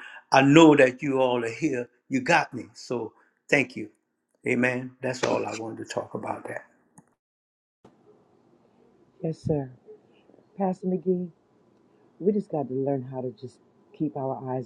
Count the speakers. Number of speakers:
2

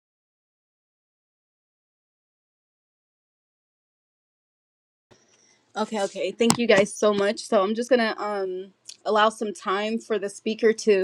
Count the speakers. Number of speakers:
1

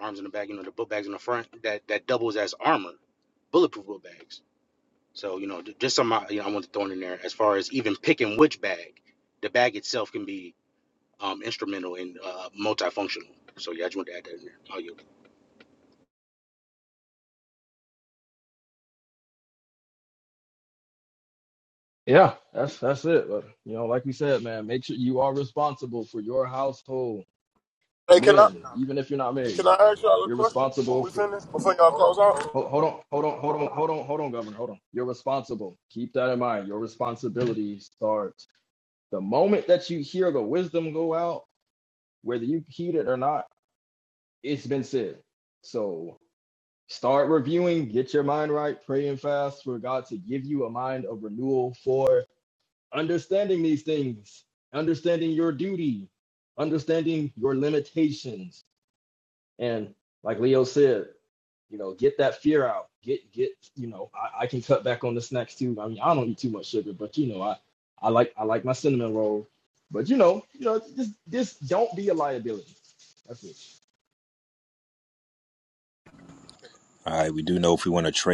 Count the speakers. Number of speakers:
4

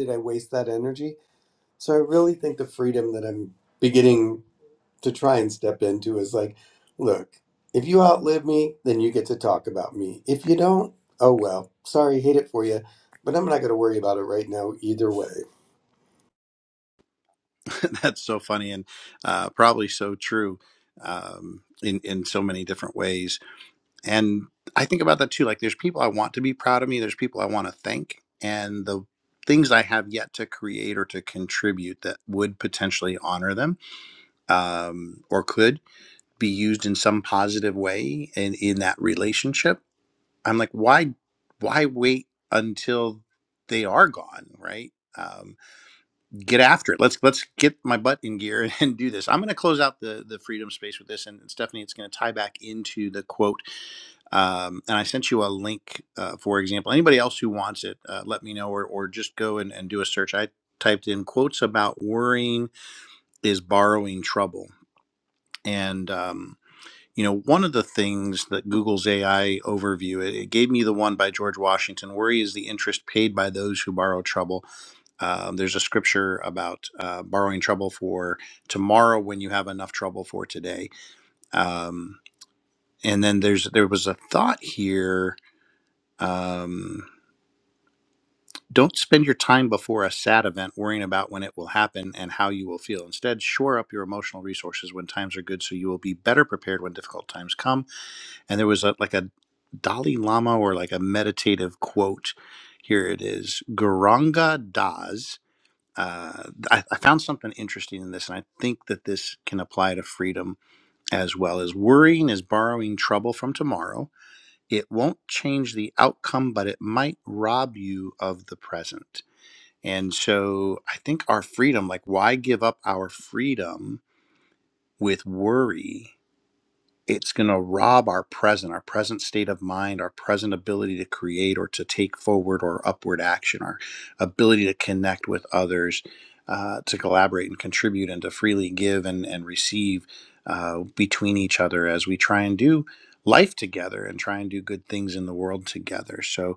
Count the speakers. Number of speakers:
2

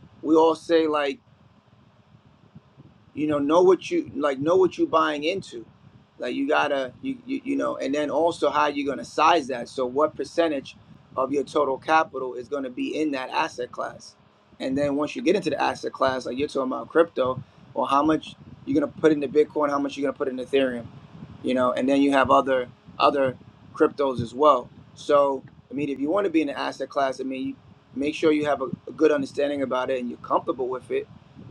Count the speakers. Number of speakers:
1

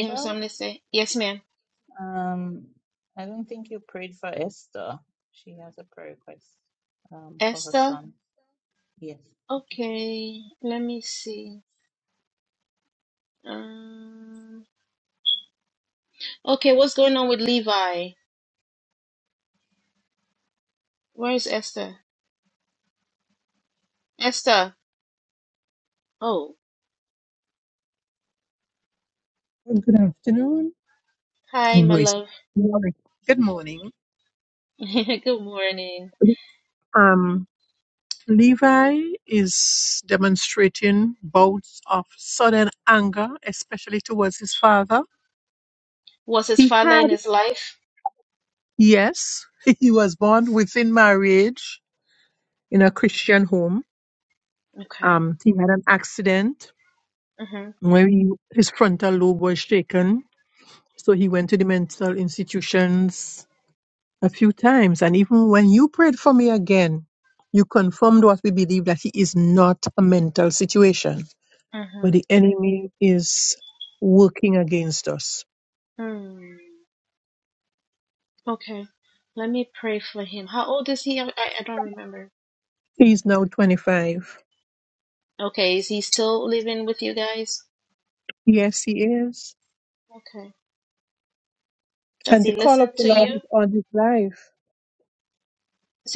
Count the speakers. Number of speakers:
3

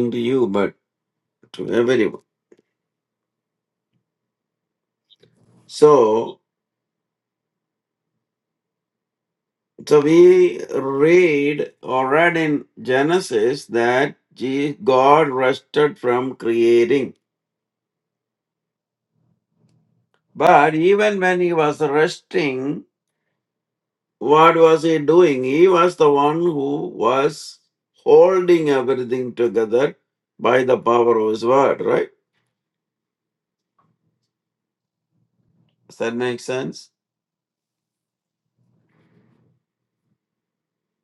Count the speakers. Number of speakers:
1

